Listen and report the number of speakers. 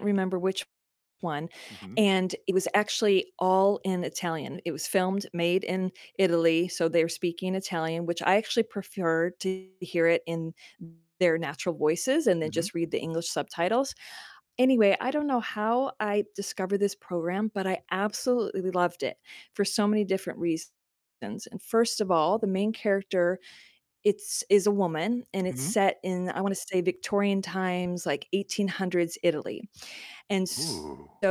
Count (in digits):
2